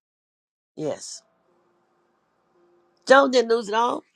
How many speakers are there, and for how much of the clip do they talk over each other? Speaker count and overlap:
one, no overlap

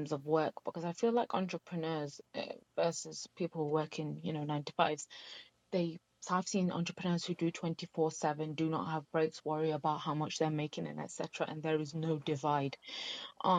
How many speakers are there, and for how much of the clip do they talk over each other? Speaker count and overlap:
one, no overlap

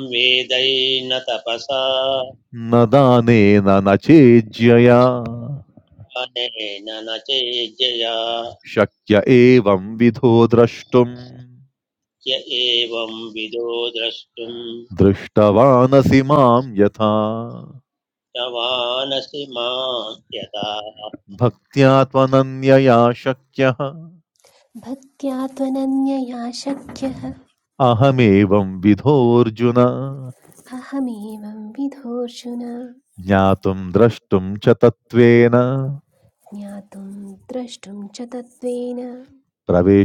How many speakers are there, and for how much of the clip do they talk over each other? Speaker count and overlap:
three, no overlap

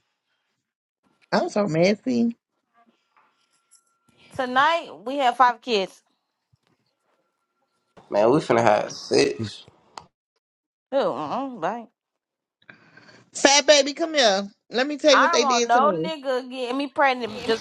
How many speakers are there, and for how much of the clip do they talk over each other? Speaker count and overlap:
three, about 5%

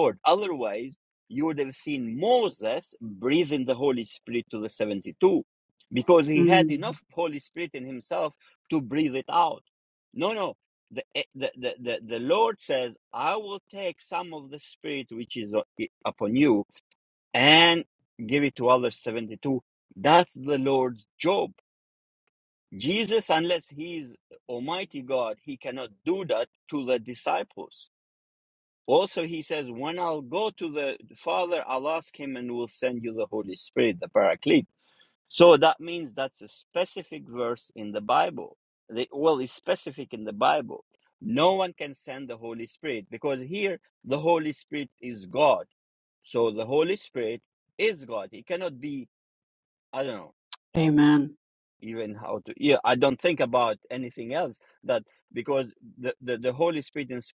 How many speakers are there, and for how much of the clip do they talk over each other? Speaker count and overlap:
two, about 1%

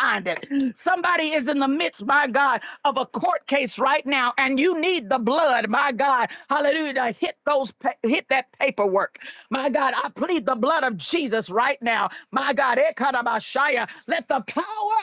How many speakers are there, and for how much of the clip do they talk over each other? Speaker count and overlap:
one, no overlap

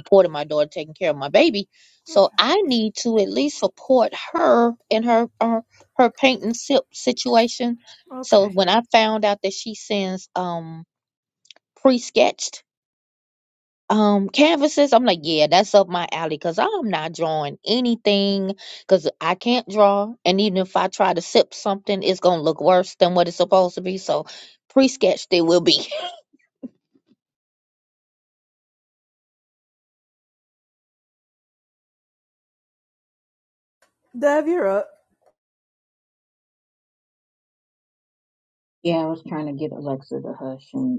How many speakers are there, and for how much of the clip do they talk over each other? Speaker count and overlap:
three, about 1%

